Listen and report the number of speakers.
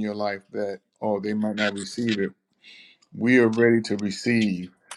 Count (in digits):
1